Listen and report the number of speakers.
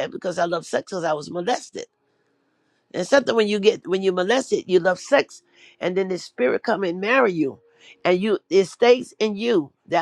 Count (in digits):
1